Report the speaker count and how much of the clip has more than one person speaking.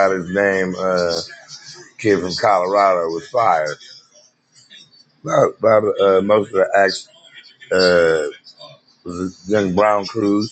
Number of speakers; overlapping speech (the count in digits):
1, no overlap